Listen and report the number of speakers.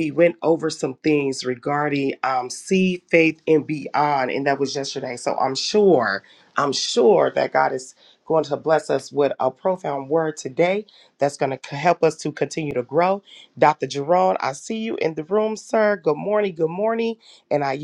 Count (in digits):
1